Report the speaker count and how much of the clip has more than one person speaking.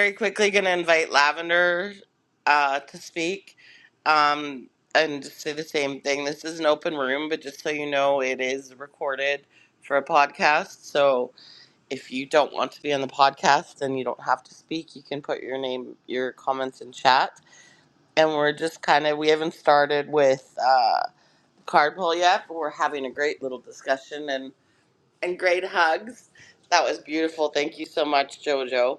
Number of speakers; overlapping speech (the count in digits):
1, no overlap